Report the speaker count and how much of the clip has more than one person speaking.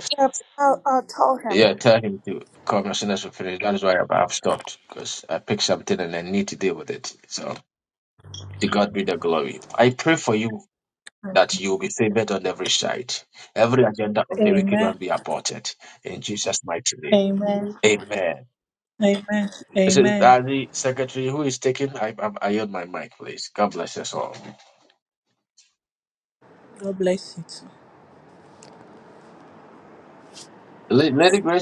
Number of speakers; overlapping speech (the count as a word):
three, about 4%